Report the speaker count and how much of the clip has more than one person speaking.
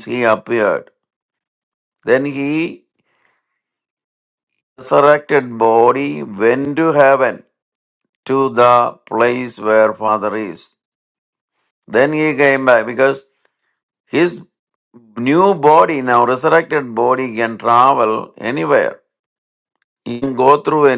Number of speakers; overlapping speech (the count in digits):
1, no overlap